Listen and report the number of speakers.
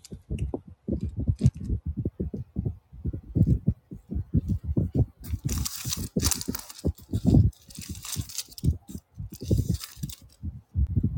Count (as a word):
zero